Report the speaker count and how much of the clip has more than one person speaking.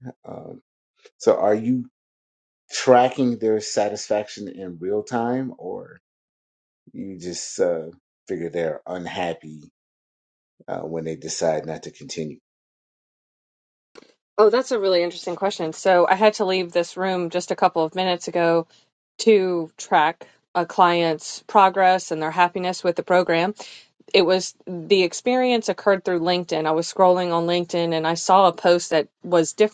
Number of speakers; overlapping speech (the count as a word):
two, no overlap